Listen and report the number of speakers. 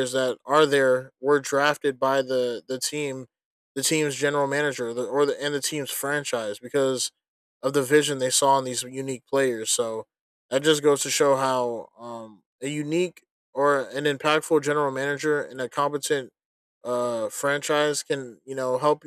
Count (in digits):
1